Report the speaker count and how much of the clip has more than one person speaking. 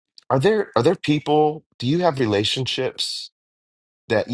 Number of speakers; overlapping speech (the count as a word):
one, no overlap